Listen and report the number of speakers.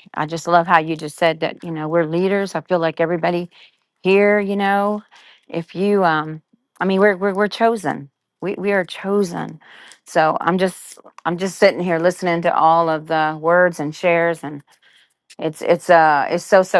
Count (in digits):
1